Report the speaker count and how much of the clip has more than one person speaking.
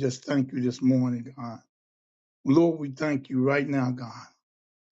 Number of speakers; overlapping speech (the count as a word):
one, no overlap